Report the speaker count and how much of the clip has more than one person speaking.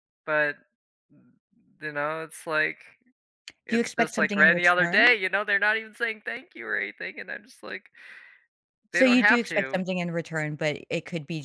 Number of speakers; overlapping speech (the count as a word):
two, about 20%